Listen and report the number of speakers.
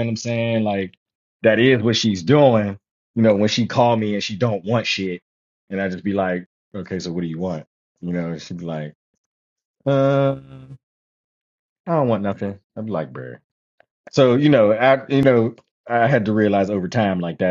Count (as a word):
one